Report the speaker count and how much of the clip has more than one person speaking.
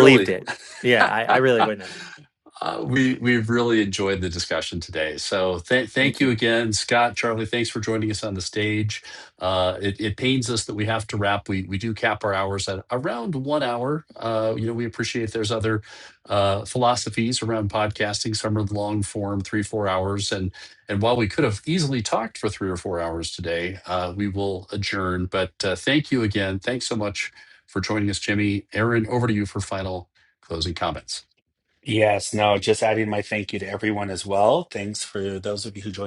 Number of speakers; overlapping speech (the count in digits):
3, about 2%